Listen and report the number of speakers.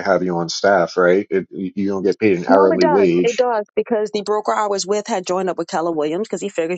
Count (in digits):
2